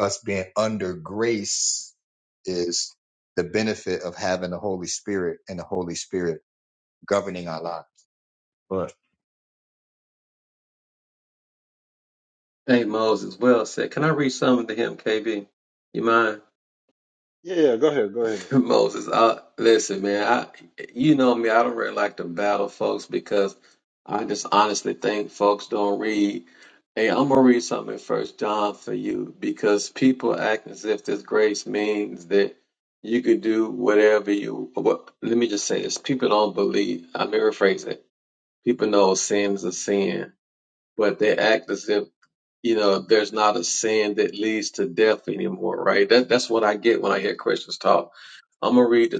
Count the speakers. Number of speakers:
3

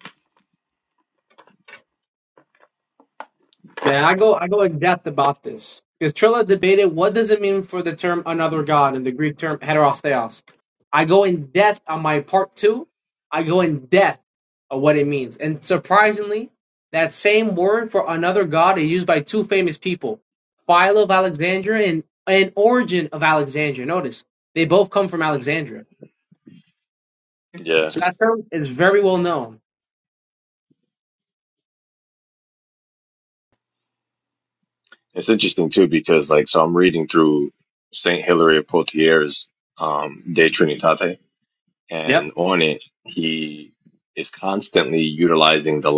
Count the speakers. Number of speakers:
2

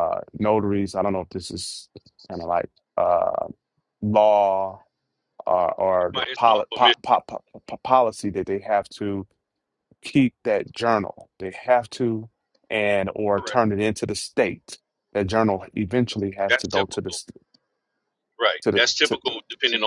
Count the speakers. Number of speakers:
2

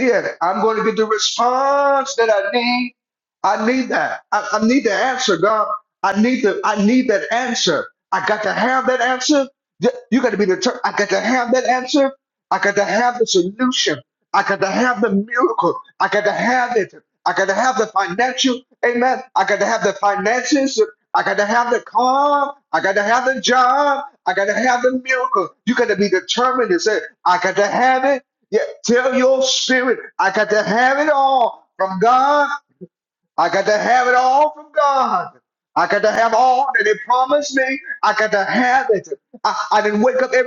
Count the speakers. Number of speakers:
1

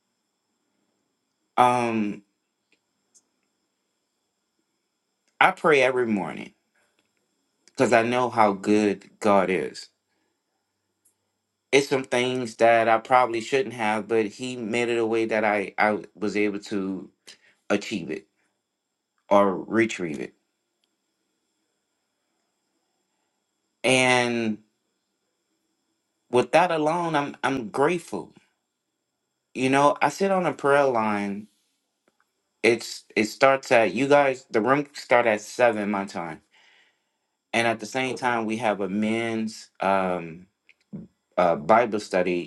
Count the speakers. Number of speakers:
1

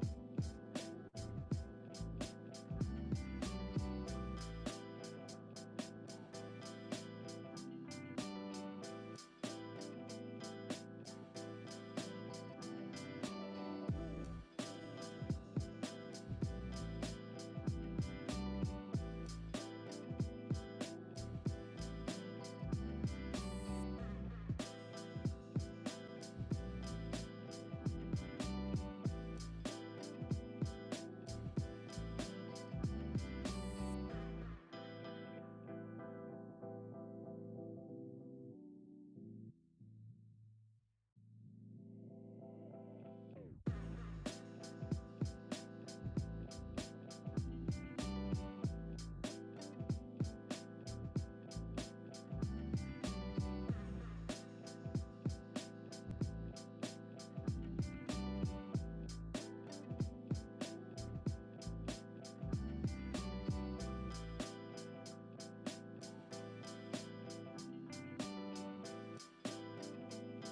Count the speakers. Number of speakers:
0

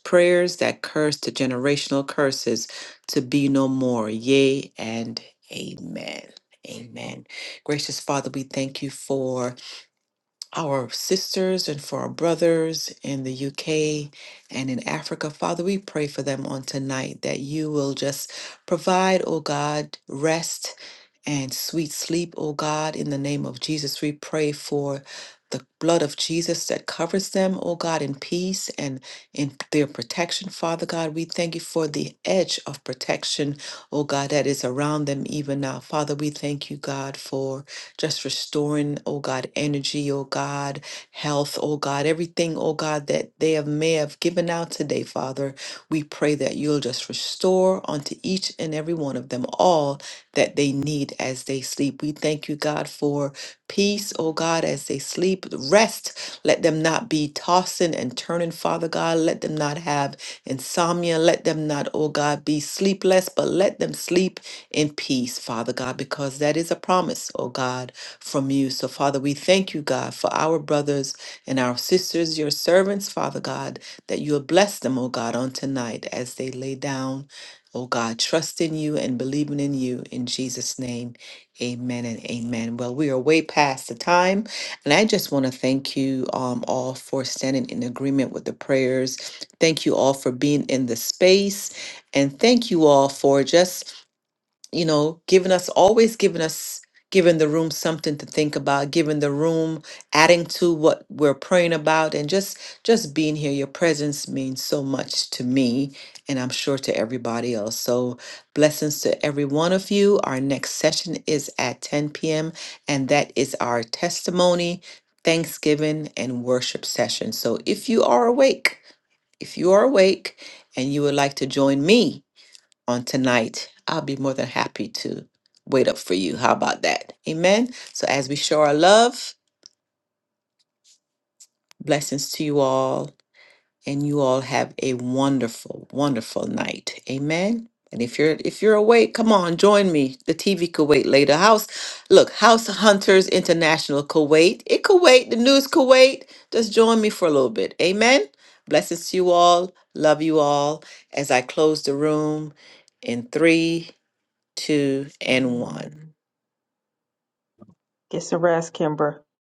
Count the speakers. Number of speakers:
2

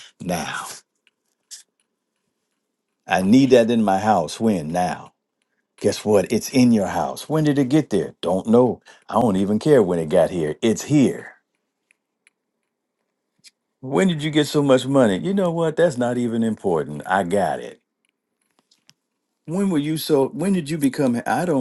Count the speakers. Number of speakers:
1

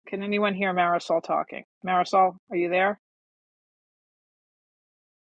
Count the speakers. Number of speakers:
1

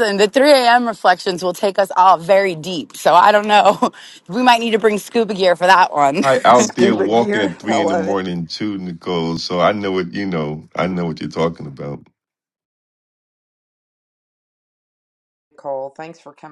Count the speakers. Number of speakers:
3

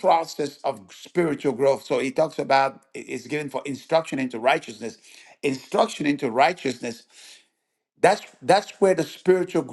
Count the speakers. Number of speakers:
1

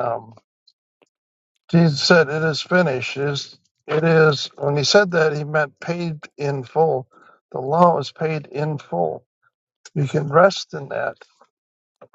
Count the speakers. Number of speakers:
1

